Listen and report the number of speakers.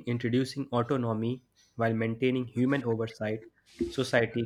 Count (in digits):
1